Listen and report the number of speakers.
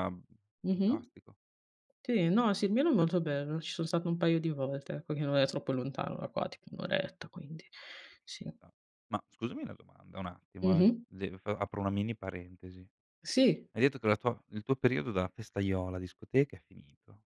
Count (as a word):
two